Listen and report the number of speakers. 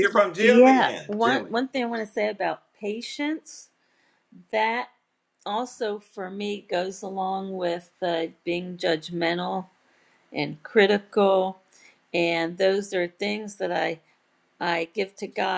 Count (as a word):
two